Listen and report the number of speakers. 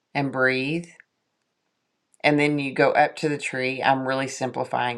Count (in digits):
1